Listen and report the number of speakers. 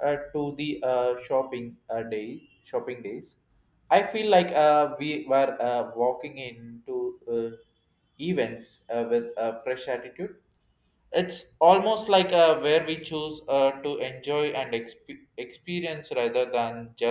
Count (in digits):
1